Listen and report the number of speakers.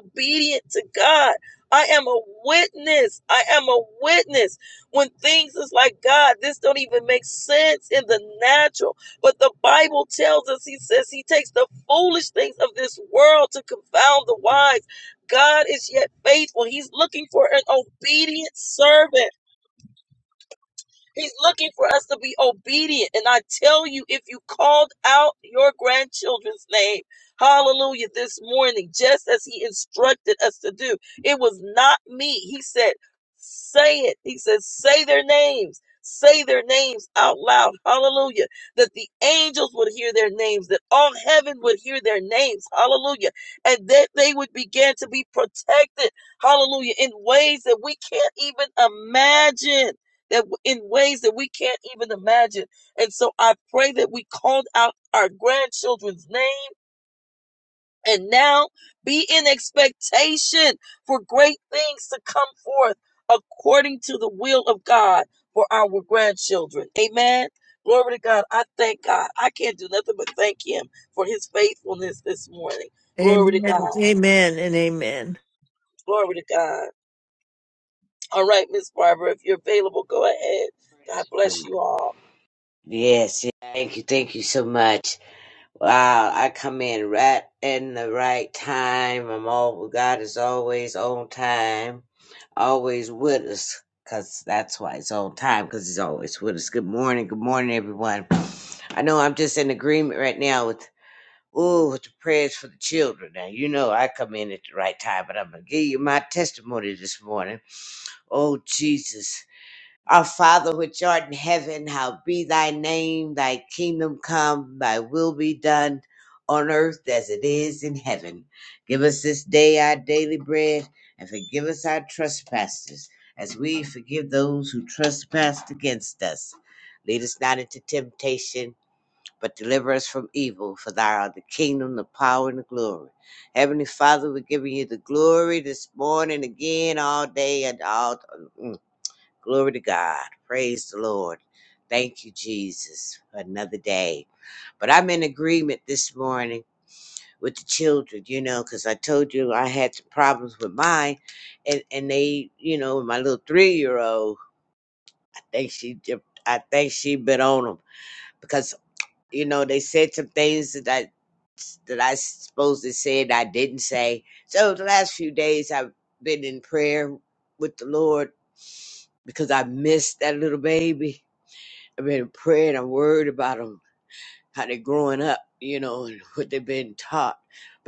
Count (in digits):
3